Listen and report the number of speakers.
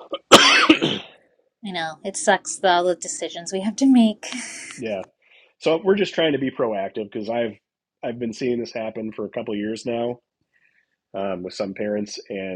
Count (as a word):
two